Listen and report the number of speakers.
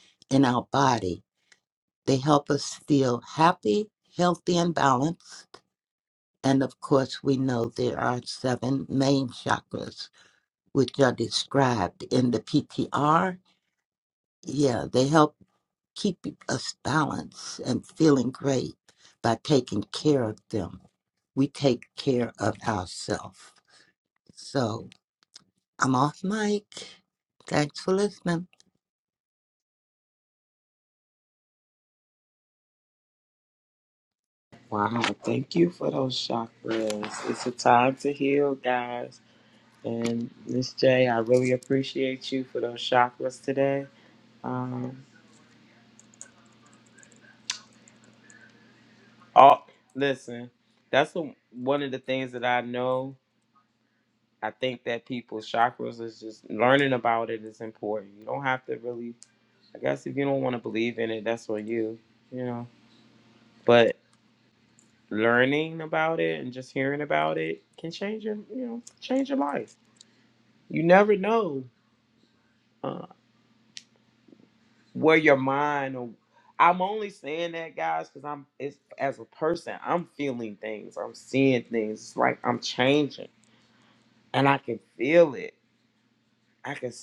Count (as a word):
two